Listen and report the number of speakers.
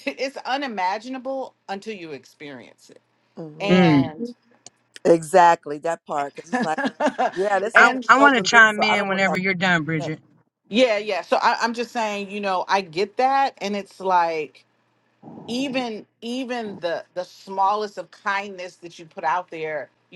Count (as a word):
three